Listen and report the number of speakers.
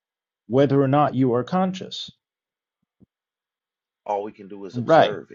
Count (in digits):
2